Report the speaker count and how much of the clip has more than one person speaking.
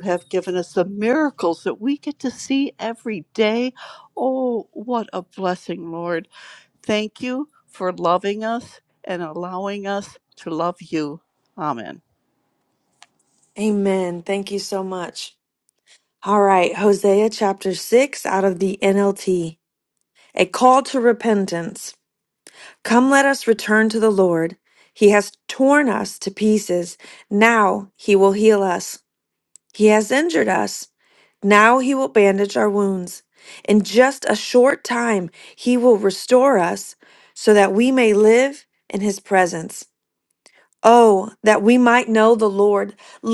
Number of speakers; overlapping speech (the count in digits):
2, no overlap